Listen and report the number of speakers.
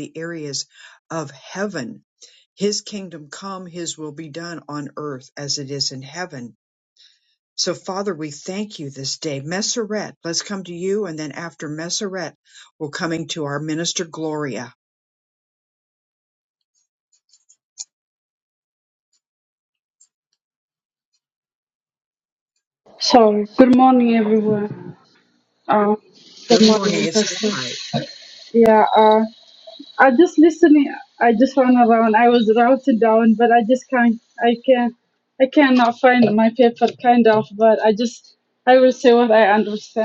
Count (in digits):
2